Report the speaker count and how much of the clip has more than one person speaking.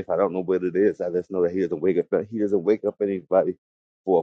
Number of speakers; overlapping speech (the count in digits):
1, no overlap